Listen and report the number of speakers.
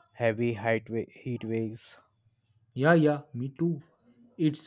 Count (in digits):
2